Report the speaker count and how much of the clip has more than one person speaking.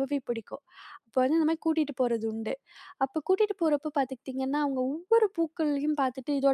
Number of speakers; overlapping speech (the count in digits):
1, no overlap